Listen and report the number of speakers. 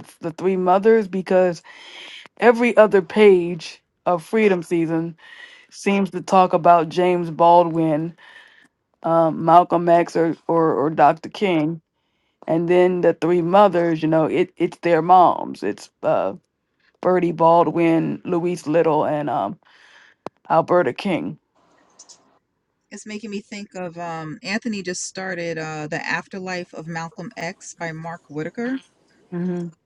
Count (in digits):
2